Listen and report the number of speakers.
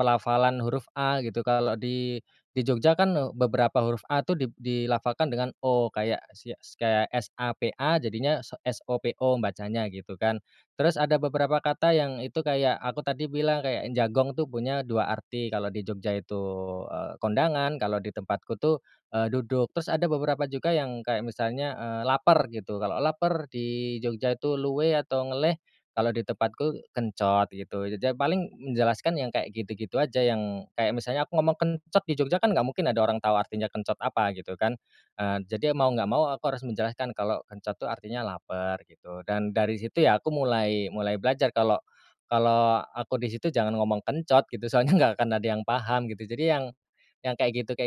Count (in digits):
1